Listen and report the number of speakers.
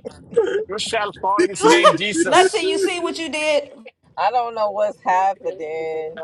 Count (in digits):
3